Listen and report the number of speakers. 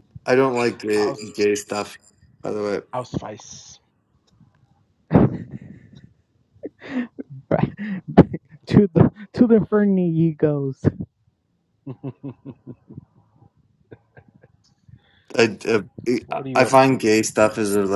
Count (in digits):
3